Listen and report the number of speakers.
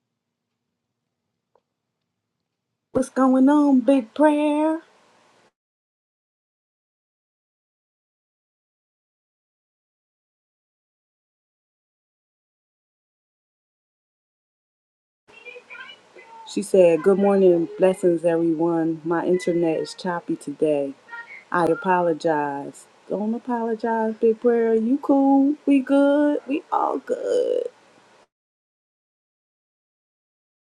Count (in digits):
1